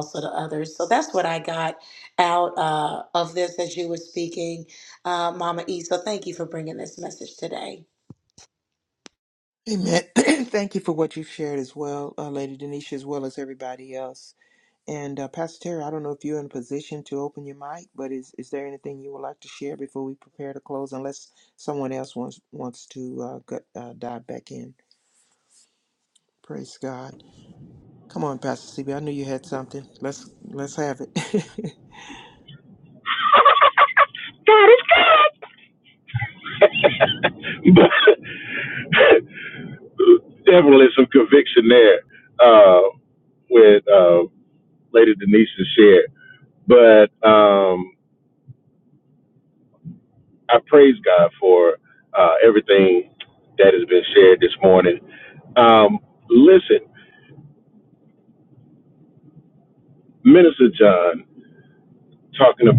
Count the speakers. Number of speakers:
three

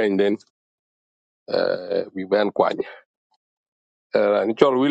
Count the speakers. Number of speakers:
one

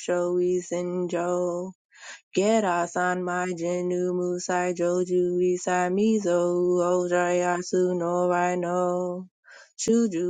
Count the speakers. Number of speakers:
one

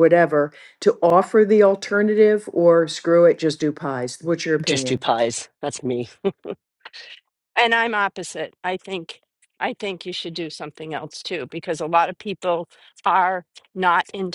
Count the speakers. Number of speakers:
three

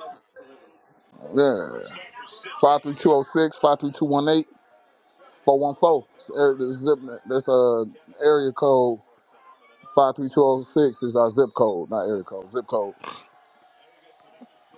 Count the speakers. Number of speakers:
one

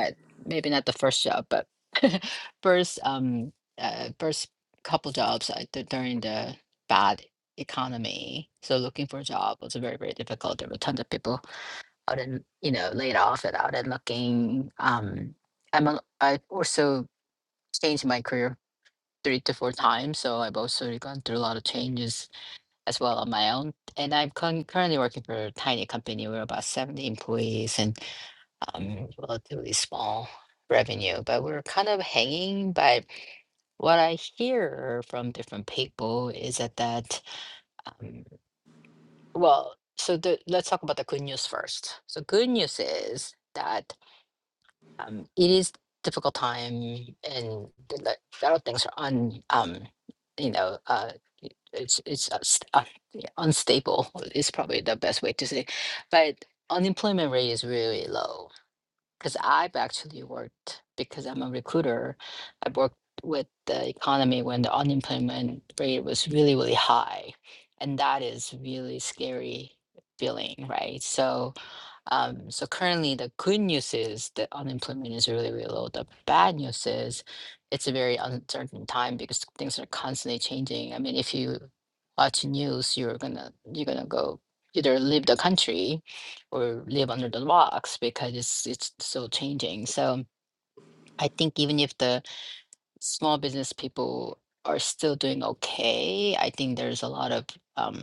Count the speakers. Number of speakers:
one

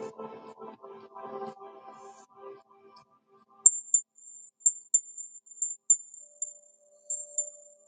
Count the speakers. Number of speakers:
zero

